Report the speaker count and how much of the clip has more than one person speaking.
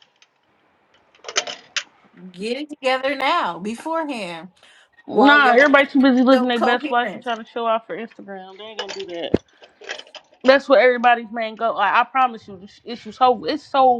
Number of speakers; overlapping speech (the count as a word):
two, about 12%